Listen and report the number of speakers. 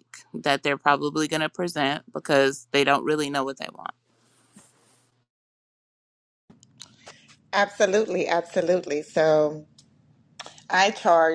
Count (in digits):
2